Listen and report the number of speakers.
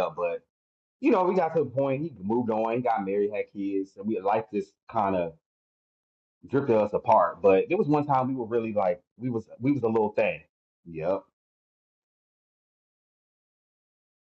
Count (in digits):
1